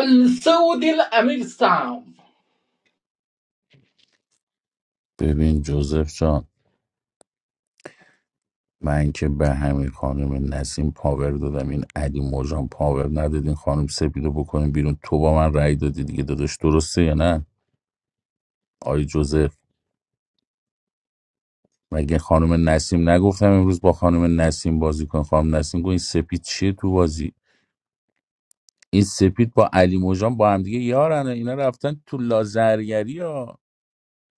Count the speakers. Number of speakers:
2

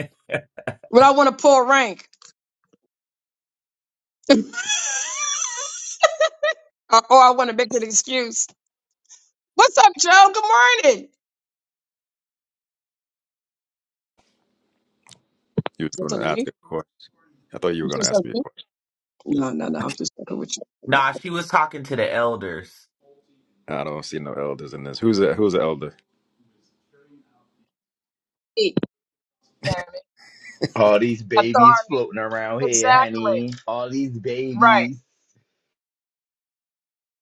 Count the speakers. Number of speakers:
4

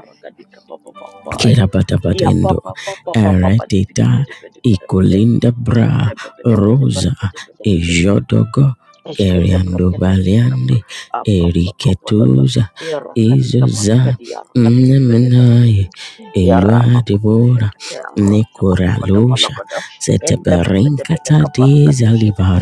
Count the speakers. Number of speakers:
2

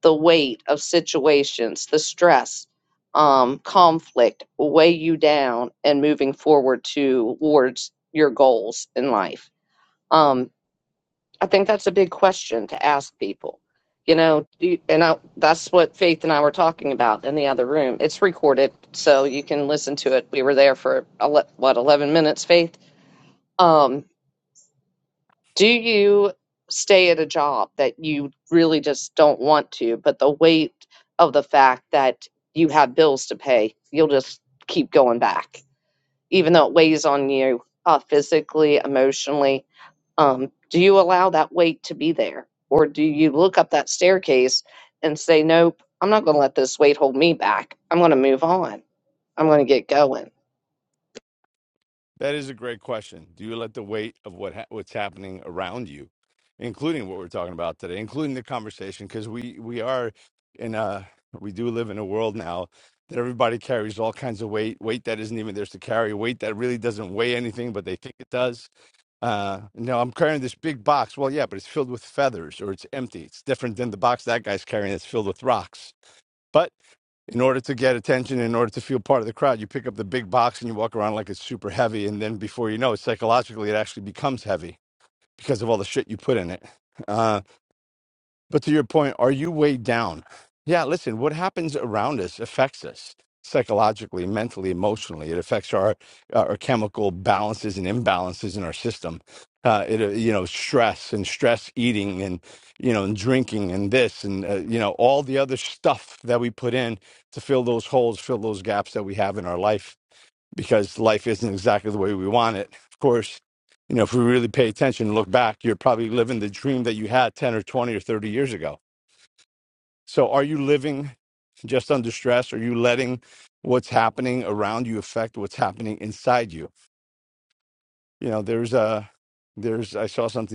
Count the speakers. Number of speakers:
2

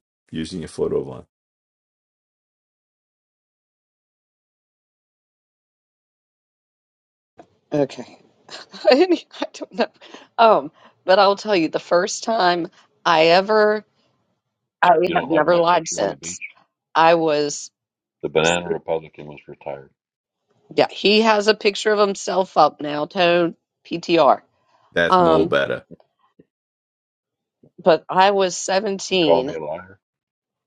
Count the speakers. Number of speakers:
3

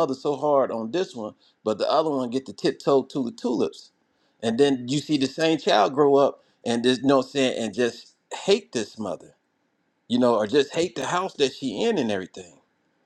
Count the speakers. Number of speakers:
1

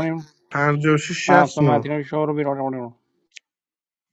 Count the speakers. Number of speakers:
2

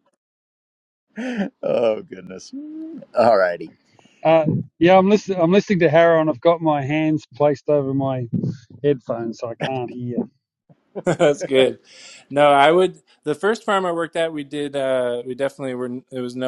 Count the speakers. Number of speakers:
3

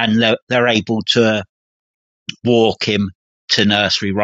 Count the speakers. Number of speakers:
1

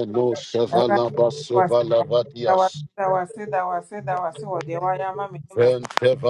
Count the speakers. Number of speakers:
2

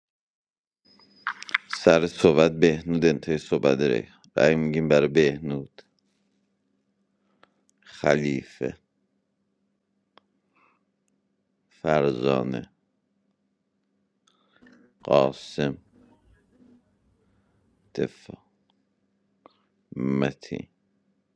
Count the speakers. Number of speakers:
1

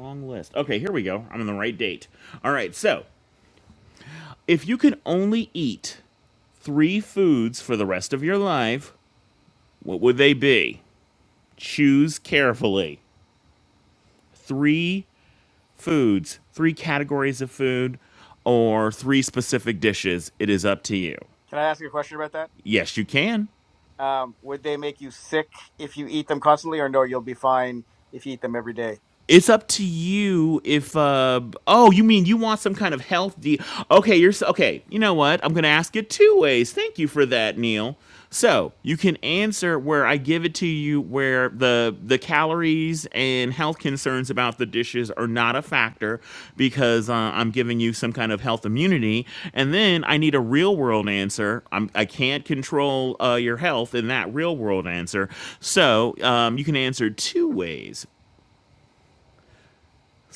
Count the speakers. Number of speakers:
2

